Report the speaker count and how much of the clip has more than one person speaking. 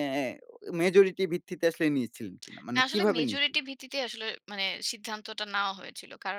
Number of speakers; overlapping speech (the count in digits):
2, about 10%